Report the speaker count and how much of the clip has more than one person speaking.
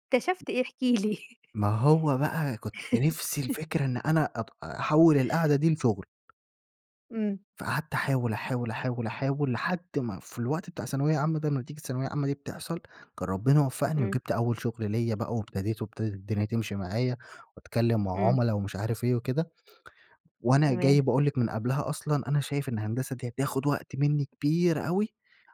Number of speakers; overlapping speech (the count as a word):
two, about 3%